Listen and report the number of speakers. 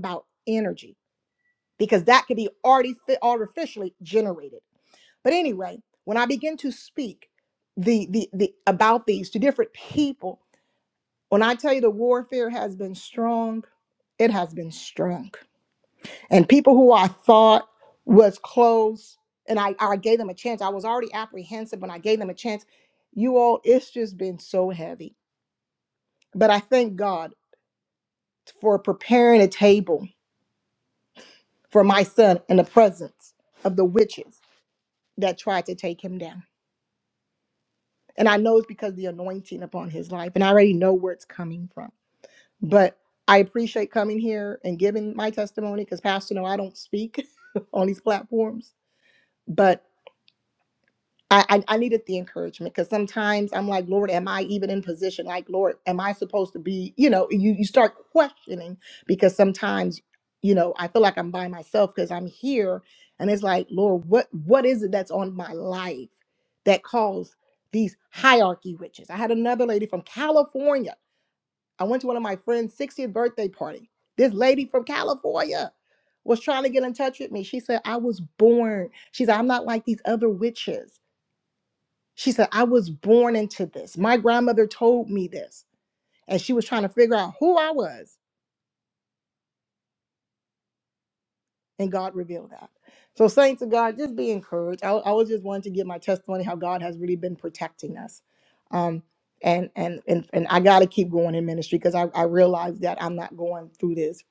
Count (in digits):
1